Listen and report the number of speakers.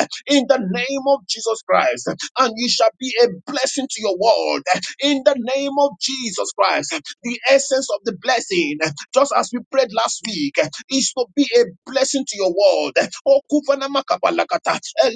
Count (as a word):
one